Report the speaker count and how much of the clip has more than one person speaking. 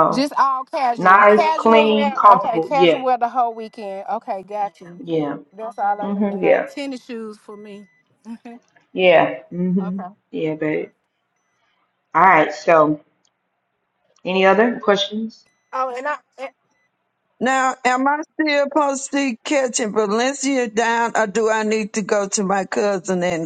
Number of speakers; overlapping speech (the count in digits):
3, about 13%